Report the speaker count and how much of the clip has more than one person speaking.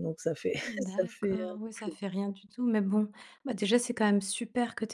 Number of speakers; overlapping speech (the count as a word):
two, about 26%